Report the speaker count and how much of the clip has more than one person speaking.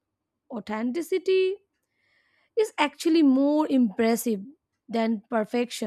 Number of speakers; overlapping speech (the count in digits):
1, no overlap